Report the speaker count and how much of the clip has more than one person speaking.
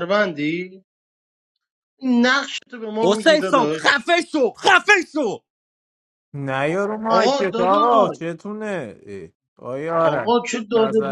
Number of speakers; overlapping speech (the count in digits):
3, about 24%